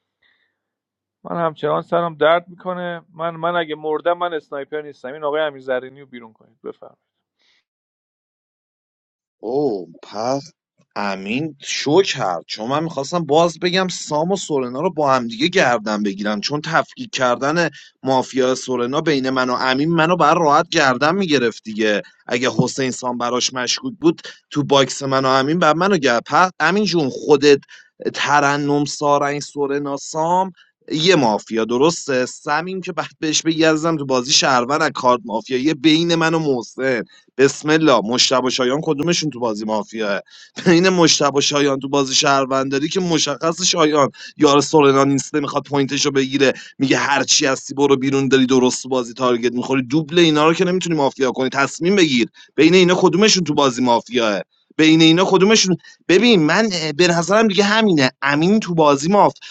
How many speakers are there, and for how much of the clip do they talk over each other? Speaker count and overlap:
2, no overlap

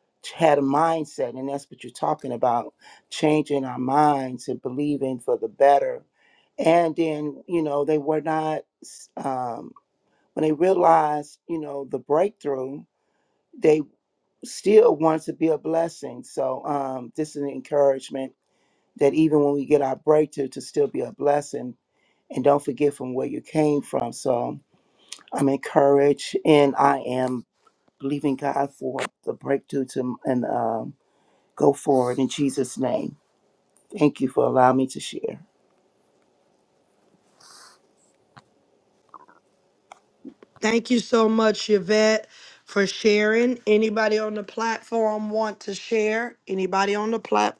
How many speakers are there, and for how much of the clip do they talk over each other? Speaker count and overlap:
2, no overlap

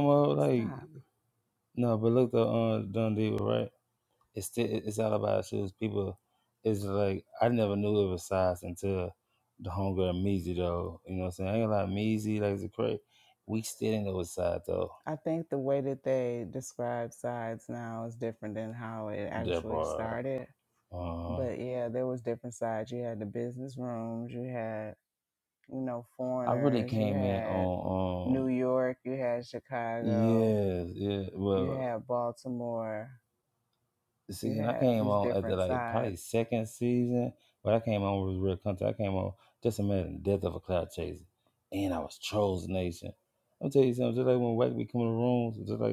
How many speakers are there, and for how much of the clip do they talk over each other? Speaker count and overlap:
2, about 12%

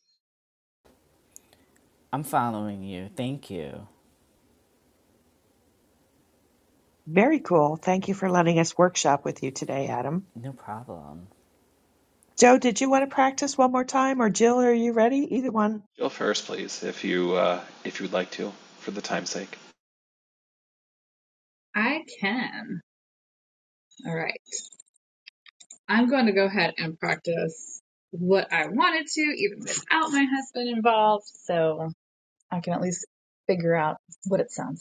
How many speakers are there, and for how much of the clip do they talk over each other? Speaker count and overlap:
4, no overlap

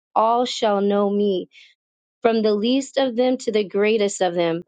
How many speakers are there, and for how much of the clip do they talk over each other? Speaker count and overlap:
1, no overlap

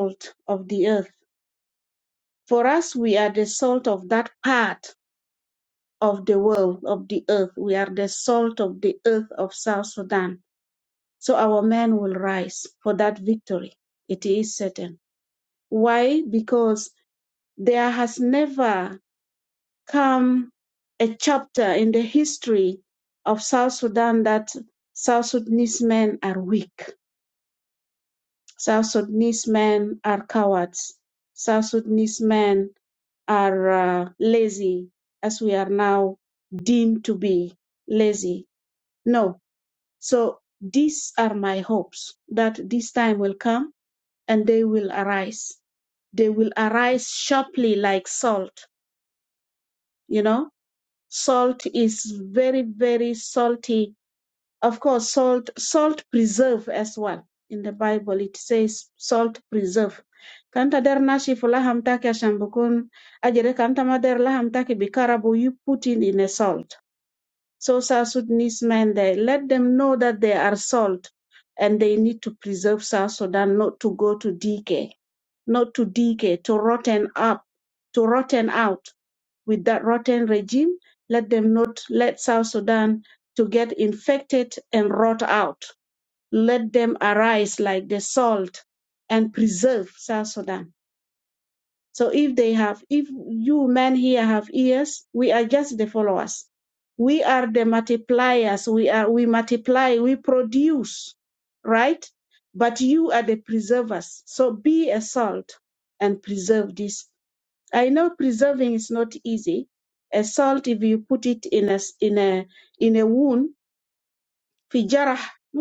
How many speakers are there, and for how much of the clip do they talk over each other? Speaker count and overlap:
1, no overlap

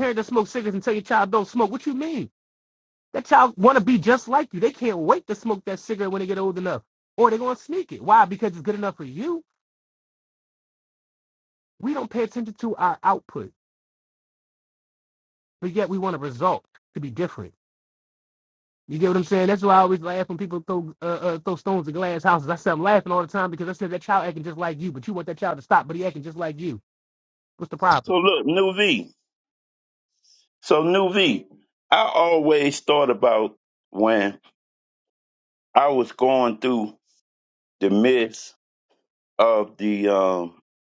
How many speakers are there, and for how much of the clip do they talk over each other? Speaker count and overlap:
2, under 1%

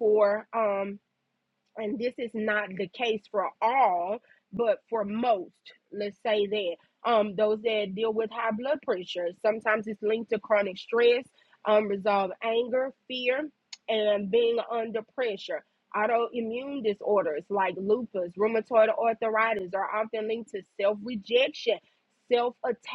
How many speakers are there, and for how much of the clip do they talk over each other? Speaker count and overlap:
1, no overlap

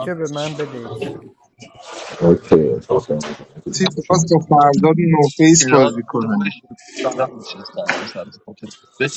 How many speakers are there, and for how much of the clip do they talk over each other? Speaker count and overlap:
4, about 12%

